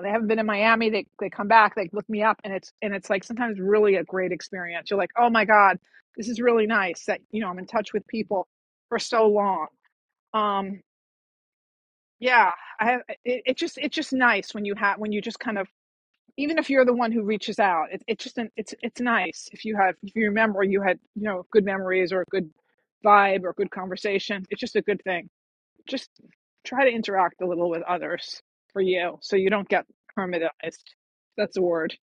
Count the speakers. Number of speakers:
1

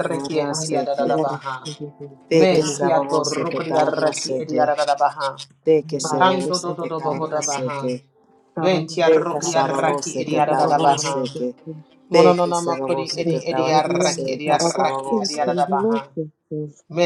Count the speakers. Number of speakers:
3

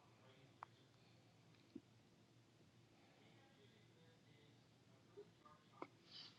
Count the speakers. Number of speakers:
0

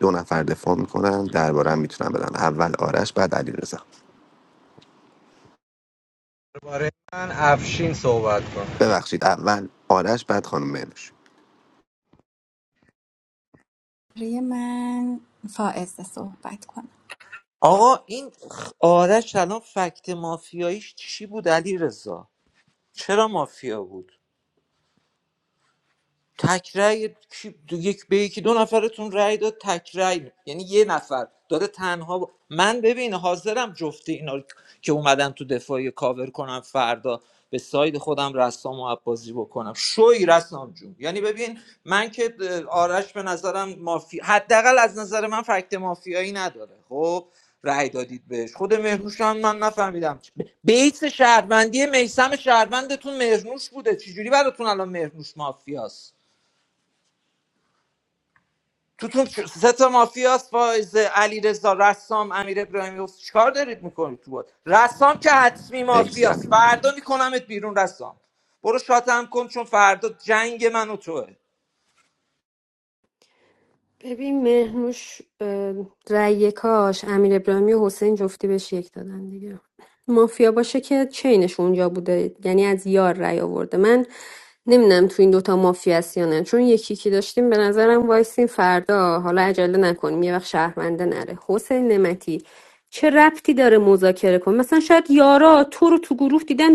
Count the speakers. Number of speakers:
5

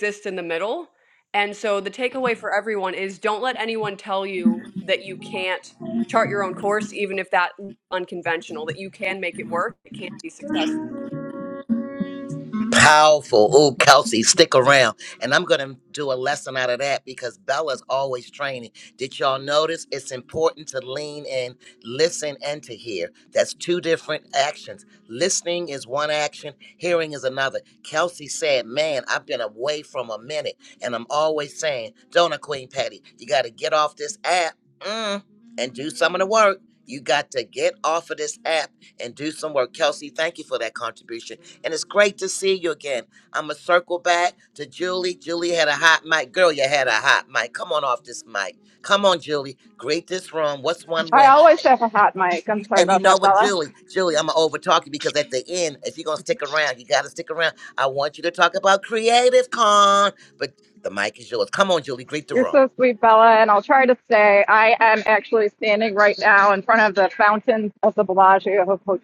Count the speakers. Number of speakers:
3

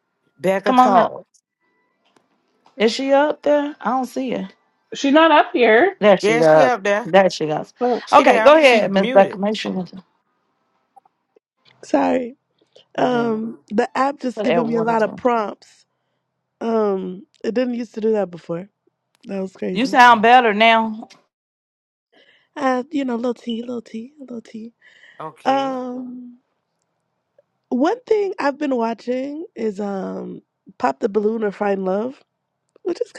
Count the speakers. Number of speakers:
4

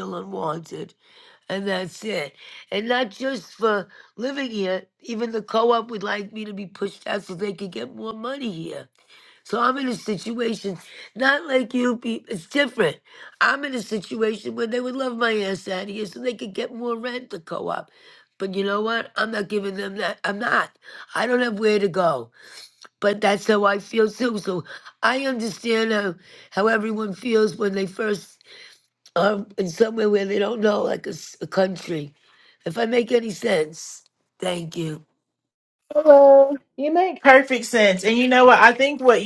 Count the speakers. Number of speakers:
2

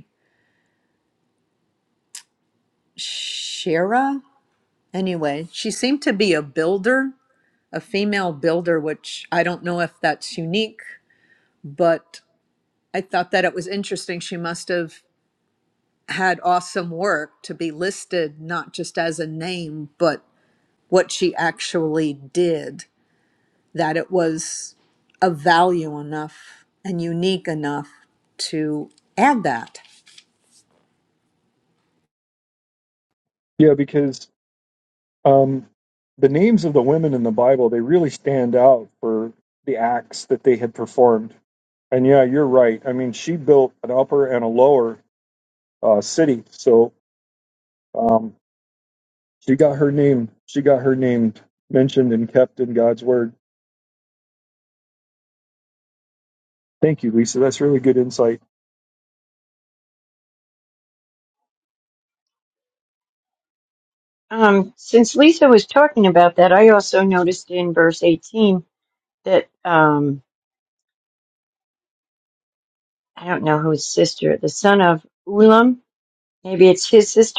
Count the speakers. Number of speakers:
3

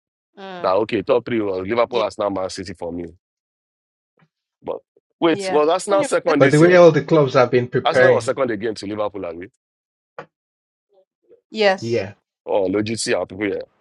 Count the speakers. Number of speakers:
3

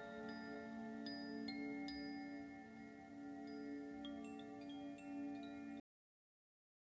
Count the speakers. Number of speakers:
0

